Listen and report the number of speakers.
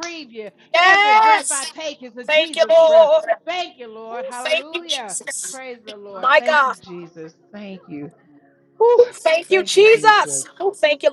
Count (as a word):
two